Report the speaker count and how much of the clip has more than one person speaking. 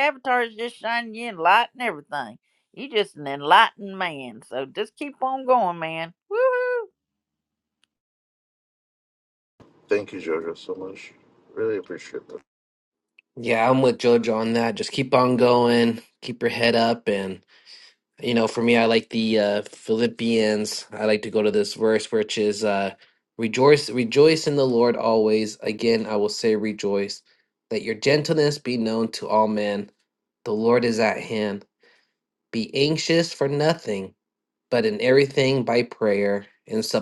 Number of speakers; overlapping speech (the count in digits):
3, no overlap